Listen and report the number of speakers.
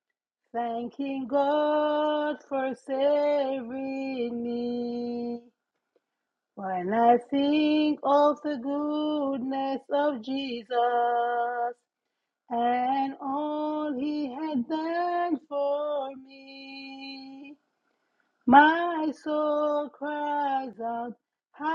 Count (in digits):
1